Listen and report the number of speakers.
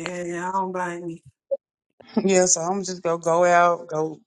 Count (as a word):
two